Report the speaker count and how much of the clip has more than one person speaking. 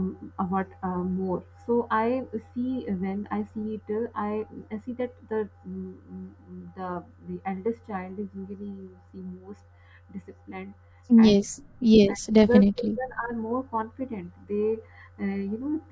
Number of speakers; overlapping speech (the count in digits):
2, about 4%